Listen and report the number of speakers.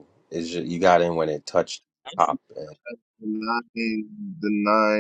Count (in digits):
2